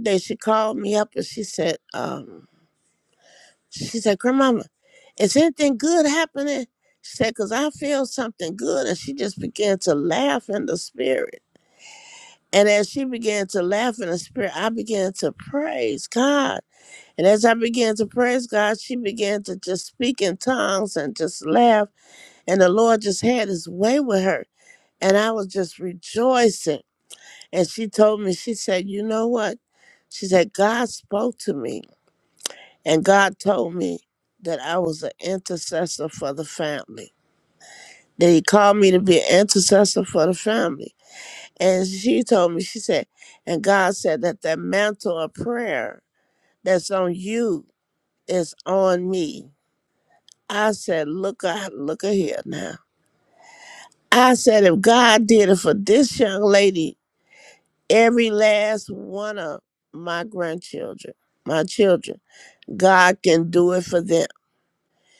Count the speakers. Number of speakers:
one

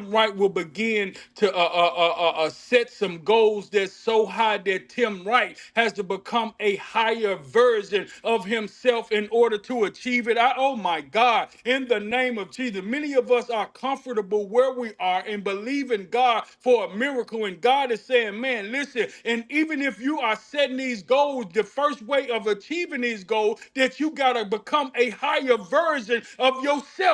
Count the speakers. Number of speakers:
one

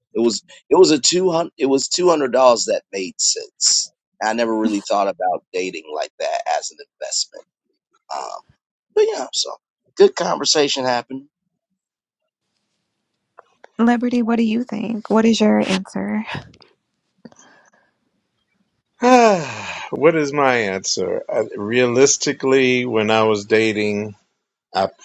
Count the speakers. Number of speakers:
three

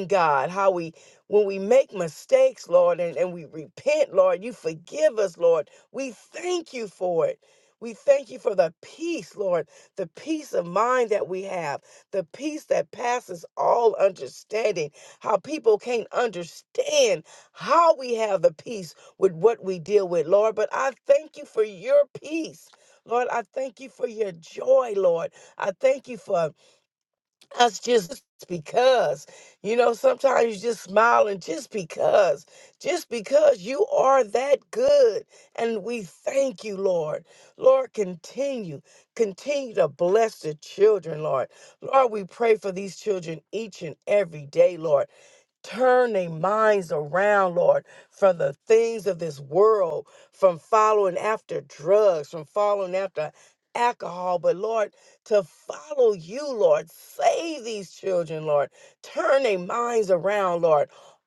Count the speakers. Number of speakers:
one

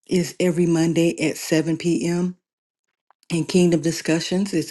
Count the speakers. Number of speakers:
one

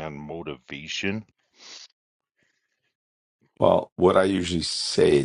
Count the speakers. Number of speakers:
two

